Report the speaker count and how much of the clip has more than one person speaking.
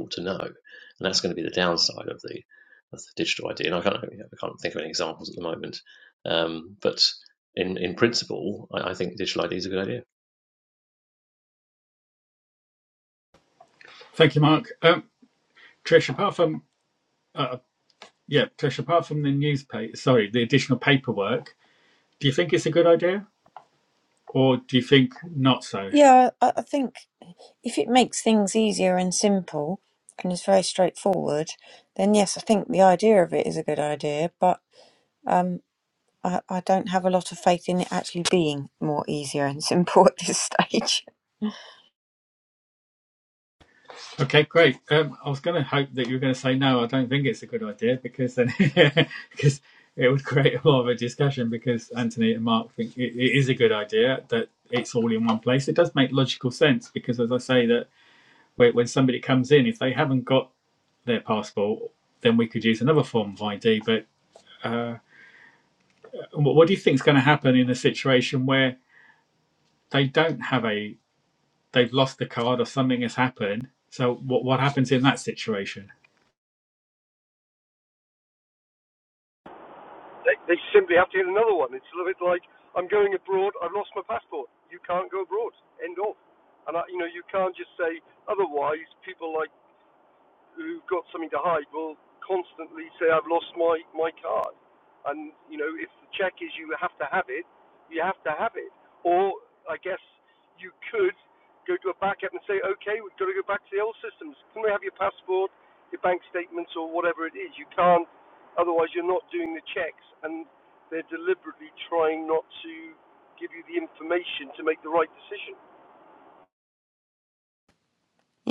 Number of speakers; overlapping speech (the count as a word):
four, under 1%